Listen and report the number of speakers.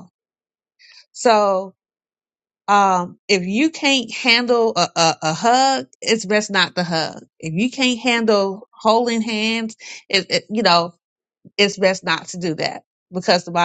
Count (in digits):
1